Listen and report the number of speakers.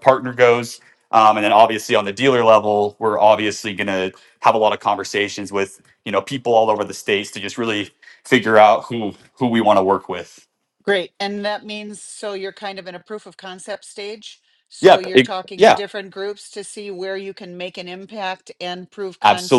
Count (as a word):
two